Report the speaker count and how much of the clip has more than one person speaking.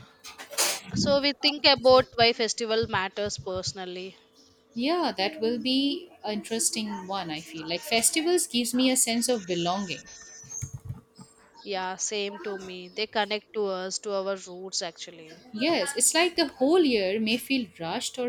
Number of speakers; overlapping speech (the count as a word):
two, no overlap